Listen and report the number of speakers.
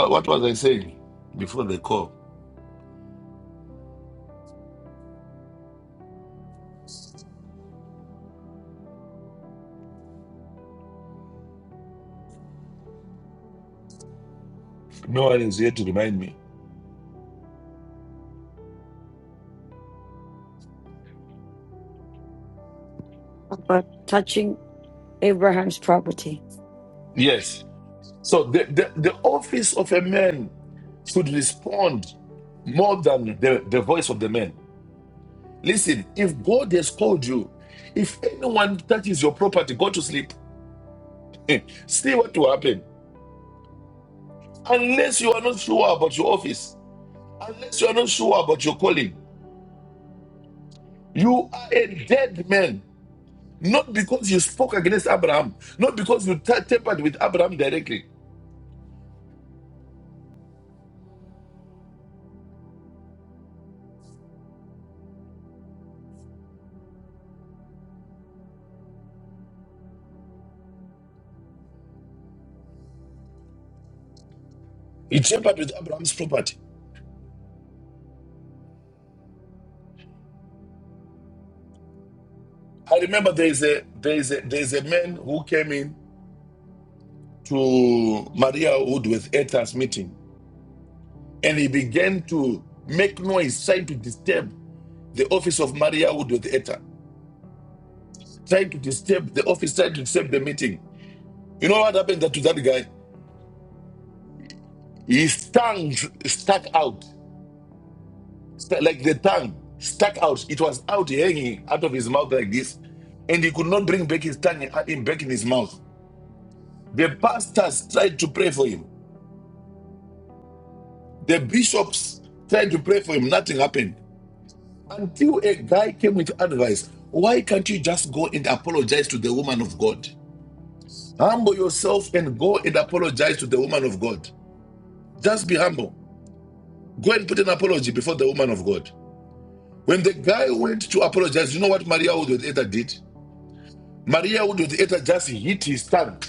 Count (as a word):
two